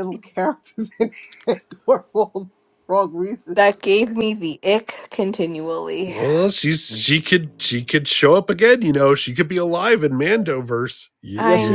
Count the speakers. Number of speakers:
three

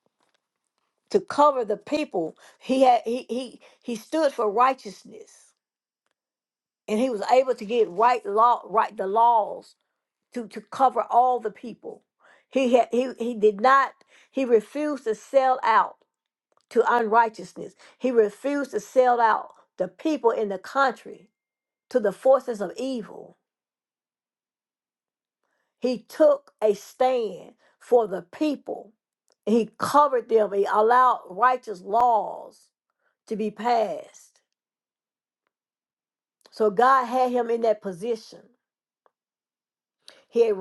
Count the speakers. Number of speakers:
one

